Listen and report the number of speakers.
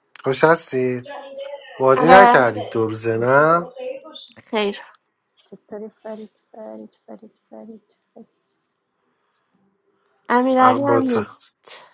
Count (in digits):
3